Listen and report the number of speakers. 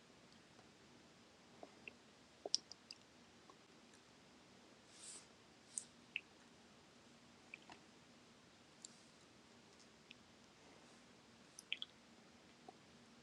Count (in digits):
0